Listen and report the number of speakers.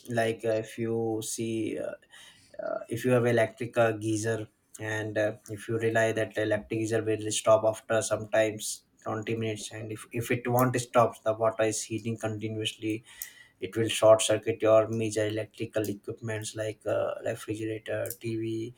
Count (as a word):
one